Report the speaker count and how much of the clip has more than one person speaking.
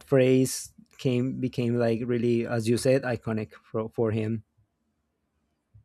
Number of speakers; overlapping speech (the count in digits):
1, no overlap